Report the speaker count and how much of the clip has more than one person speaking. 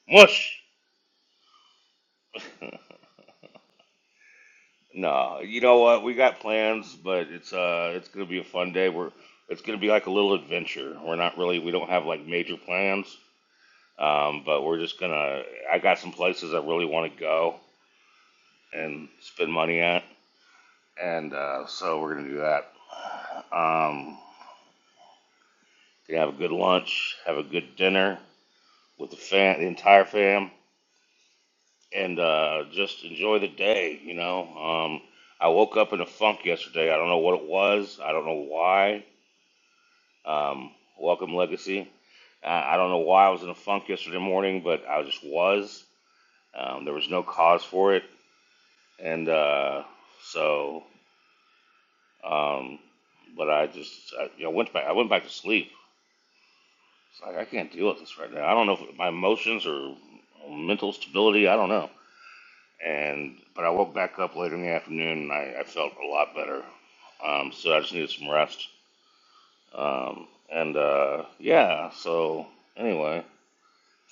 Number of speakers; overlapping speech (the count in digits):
1, no overlap